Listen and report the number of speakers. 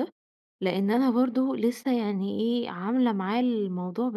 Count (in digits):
1